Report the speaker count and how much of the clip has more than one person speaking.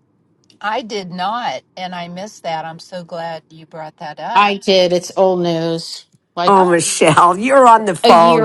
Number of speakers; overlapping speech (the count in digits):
3, about 12%